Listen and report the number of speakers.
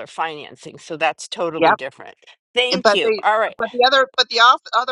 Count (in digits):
2